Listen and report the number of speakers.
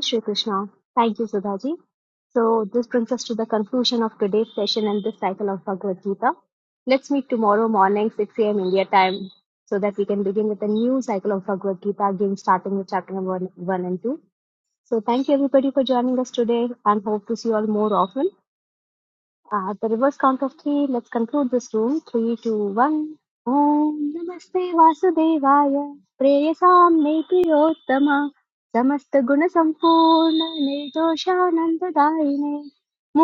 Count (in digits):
1